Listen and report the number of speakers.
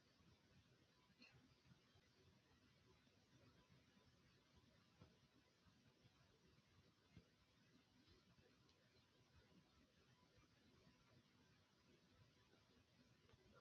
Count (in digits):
0